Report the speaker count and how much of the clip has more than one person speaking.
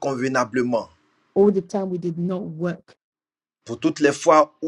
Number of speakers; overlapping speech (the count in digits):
2, no overlap